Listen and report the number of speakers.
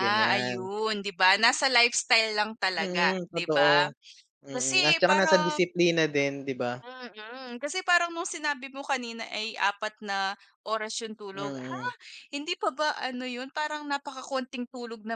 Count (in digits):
2